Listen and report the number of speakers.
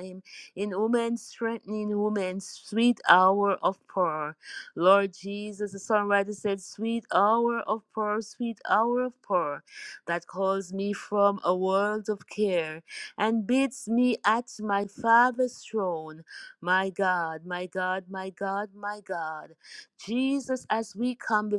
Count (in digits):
1